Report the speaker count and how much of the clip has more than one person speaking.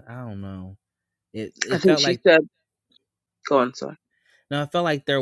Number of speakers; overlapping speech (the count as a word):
two, about 9%